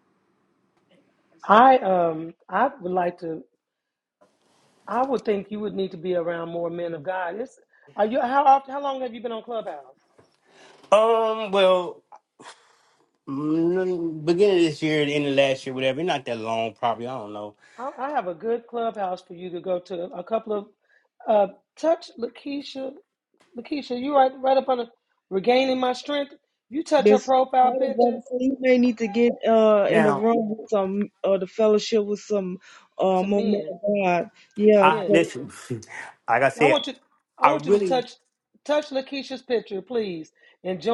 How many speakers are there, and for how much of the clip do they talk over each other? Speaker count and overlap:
three, about 8%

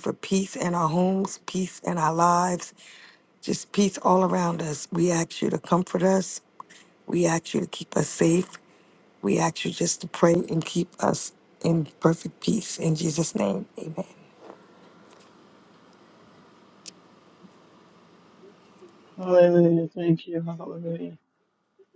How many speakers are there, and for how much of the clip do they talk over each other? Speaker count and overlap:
two, no overlap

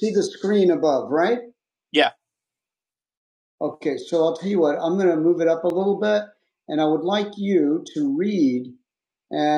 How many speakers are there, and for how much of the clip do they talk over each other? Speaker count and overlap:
one, no overlap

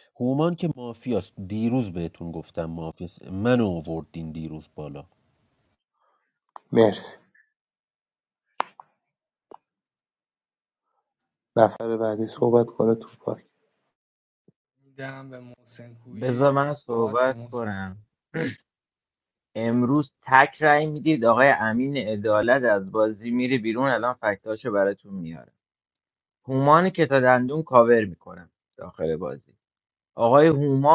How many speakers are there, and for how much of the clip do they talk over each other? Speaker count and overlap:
four, about 3%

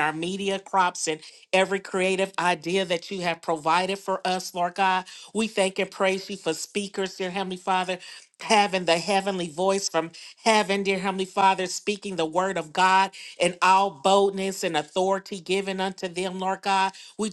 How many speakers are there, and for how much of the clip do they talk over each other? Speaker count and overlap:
one, no overlap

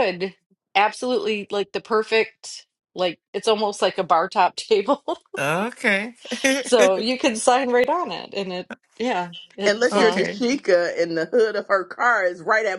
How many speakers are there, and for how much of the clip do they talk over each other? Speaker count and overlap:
three, about 6%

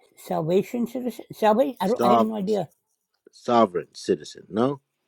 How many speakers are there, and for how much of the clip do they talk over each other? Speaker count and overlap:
two, about 6%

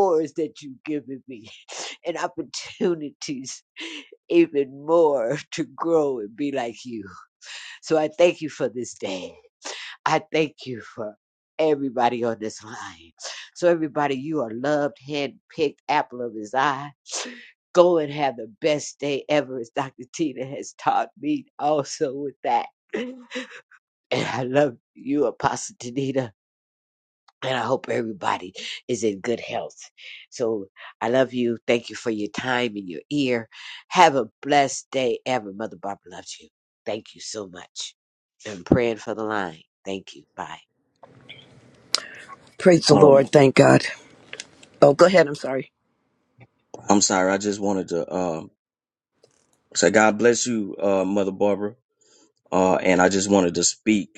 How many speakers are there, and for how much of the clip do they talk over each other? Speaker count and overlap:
three, about 1%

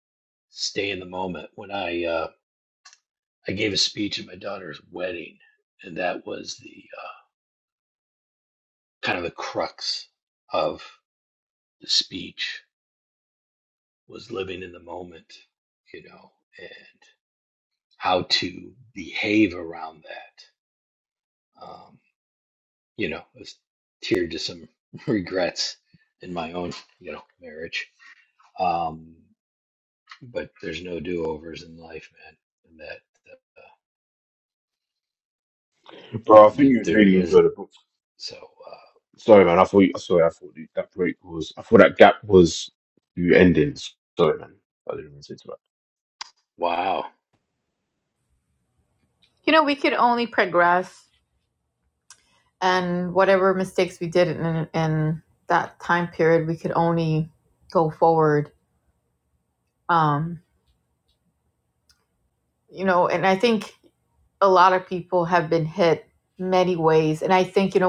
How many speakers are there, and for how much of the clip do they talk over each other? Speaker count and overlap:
three, about 2%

